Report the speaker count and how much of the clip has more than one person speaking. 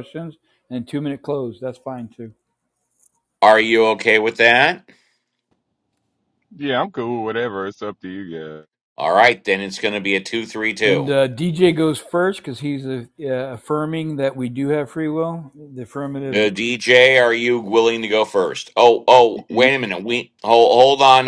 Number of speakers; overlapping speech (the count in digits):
3, about 4%